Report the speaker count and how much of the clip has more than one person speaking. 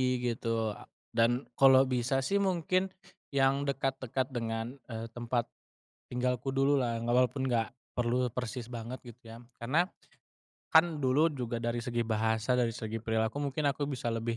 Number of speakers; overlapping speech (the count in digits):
1, no overlap